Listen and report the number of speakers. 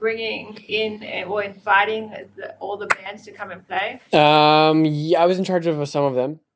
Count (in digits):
2